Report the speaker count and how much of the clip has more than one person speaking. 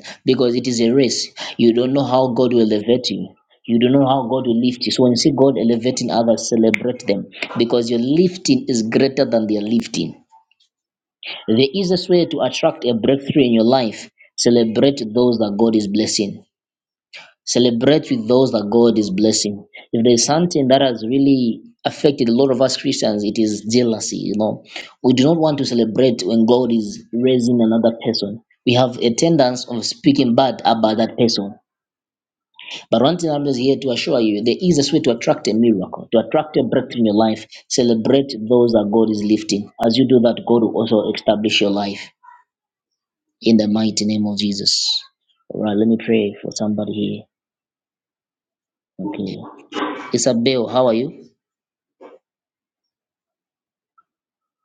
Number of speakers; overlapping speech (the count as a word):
one, no overlap